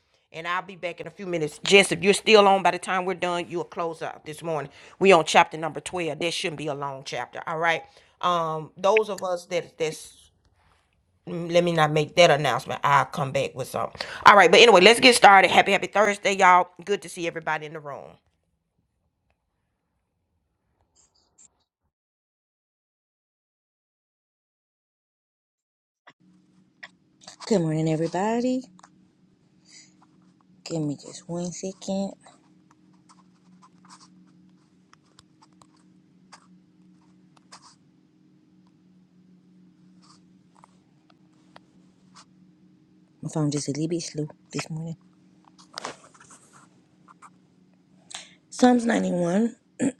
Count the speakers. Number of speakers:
2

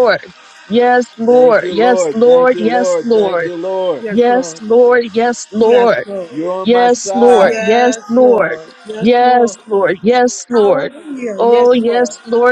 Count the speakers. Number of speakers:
3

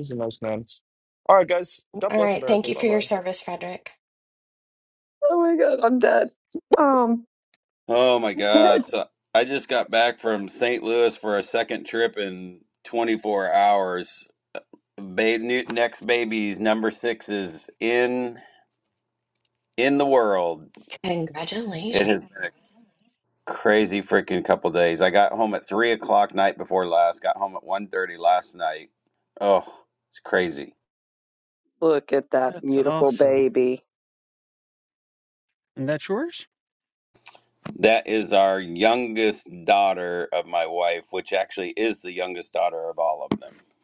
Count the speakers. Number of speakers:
5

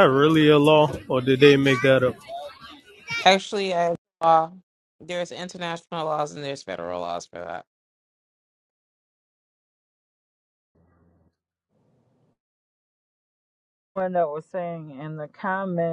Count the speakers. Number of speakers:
3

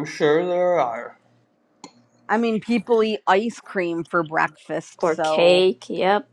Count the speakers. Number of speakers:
3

